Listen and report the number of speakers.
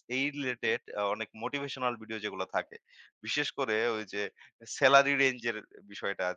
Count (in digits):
1